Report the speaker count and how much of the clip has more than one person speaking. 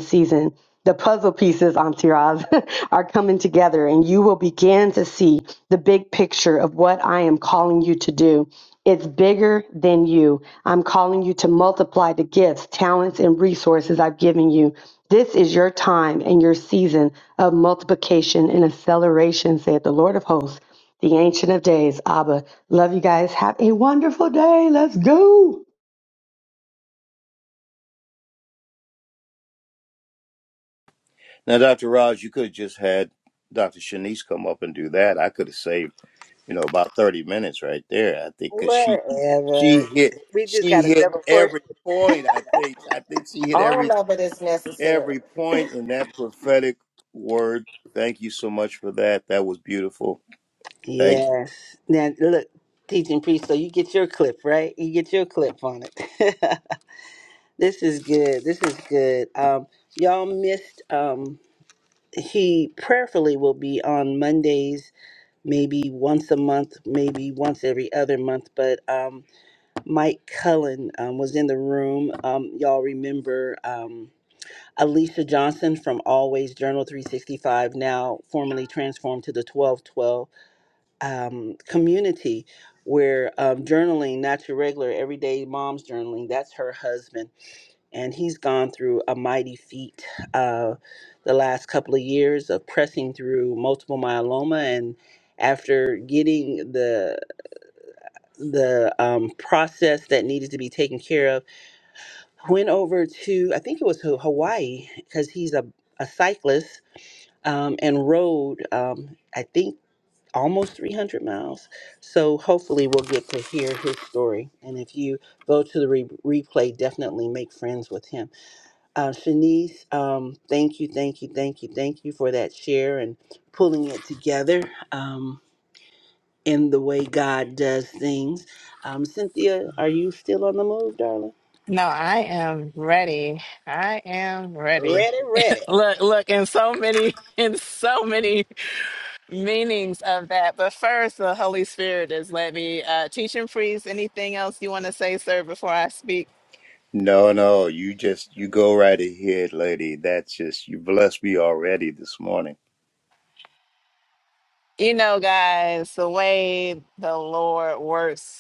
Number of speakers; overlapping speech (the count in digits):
5, about 2%